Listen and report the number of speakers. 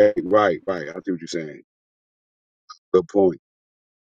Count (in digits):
1